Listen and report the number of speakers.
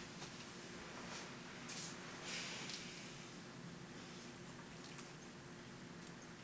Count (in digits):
0